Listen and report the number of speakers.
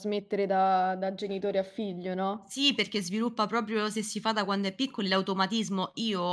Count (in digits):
2